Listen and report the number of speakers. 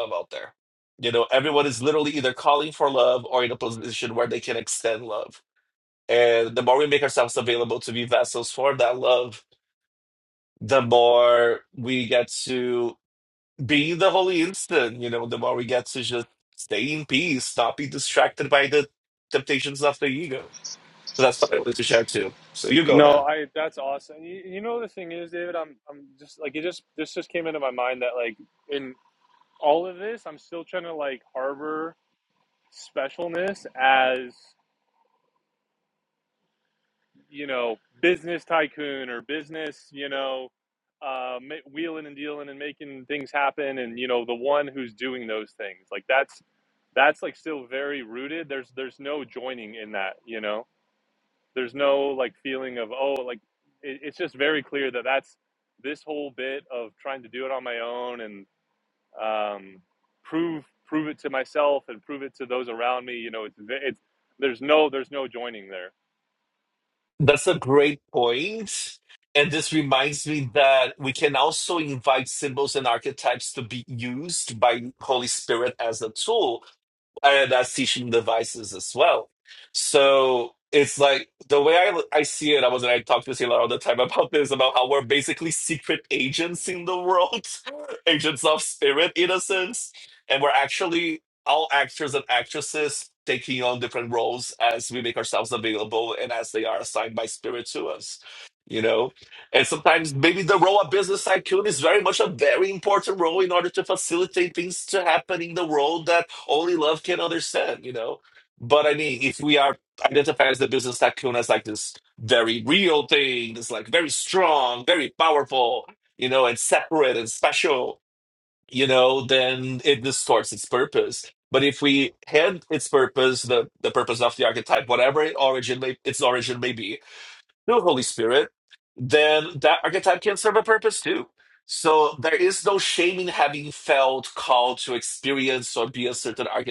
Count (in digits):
2